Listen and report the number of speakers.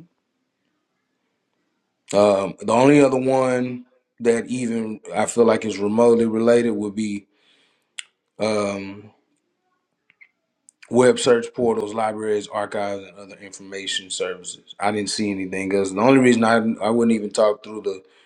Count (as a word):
one